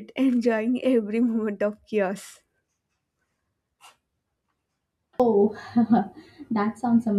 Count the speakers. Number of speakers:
two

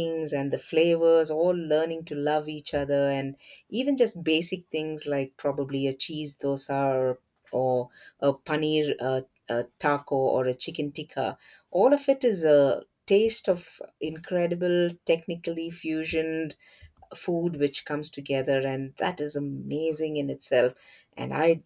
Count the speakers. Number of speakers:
one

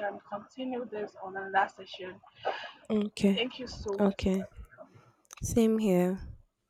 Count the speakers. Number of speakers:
two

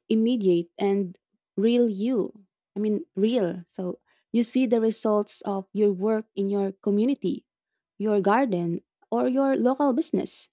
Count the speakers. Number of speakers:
one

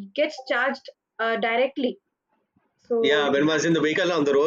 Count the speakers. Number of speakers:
two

